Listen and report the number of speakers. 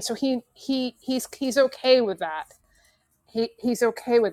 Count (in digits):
1